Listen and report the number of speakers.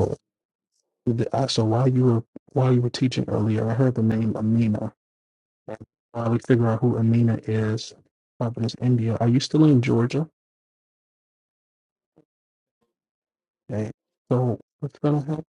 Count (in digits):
1